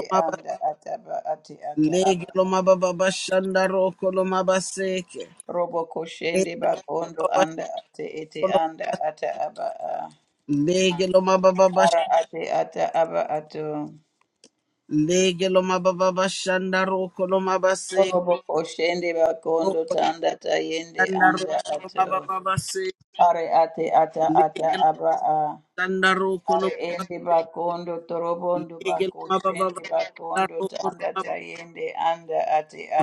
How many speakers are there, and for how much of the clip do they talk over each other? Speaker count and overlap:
2, about 18%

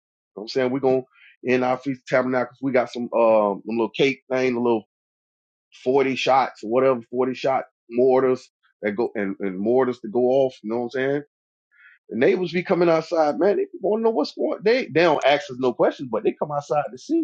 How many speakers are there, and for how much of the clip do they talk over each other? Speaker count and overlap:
1, no overlap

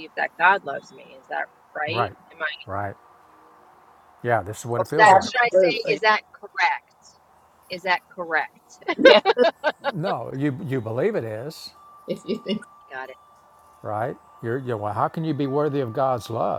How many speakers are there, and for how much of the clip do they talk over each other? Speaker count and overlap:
3, about 9%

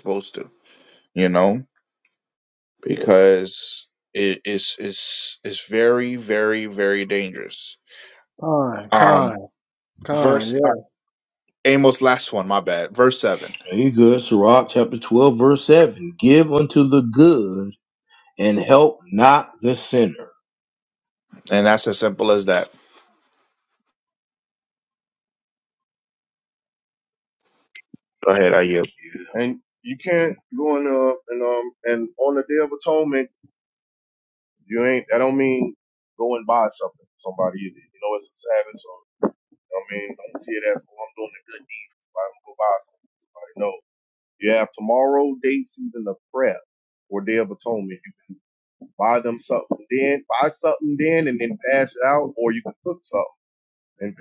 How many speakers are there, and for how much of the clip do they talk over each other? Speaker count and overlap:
4, about 2%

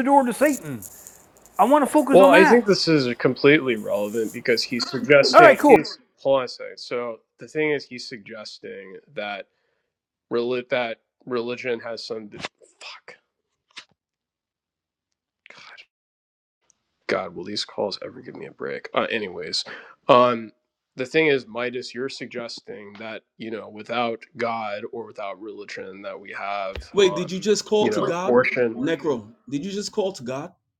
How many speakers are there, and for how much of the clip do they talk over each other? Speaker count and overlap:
3, about 9%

